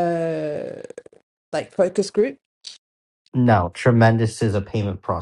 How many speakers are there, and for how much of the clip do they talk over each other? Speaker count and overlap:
2, no overlap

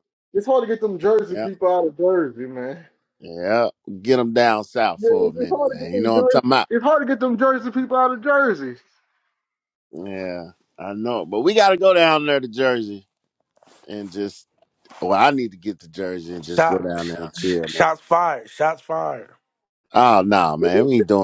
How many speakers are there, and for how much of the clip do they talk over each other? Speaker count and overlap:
3, about 15%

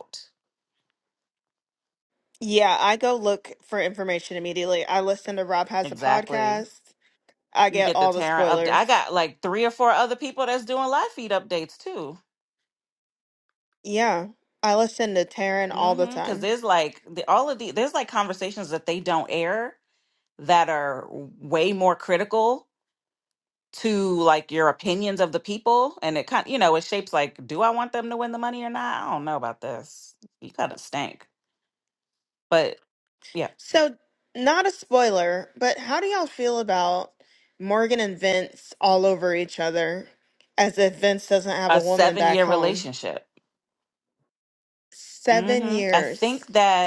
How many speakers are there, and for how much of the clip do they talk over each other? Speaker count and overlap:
2, about 10%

